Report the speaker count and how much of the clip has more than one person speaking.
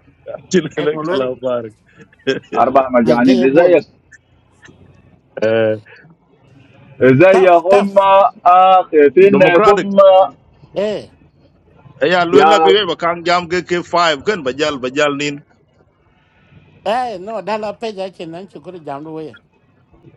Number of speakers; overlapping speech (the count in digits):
3, about 14%